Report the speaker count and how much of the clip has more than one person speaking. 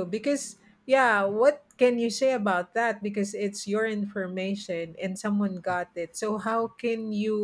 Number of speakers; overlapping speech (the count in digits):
1, no overlap